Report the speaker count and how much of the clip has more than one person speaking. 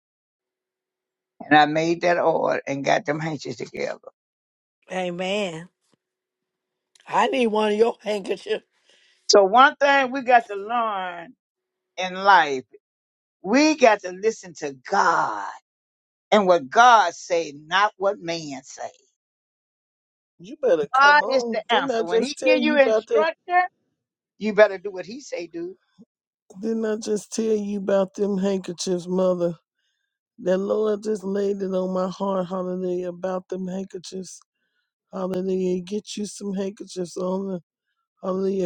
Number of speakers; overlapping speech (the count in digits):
3, about 6%